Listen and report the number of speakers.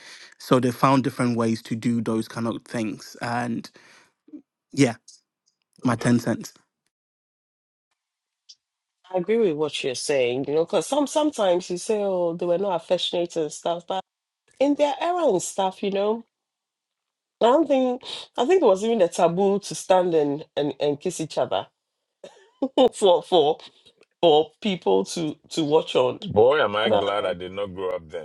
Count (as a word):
three